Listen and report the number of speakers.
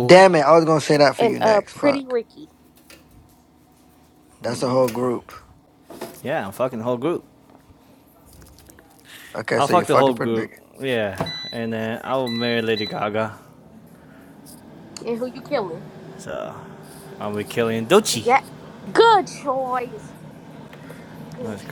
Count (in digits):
3